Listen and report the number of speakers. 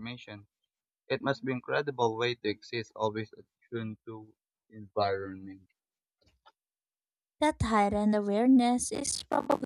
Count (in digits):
2